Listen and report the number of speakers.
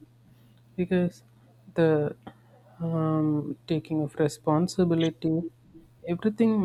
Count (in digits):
1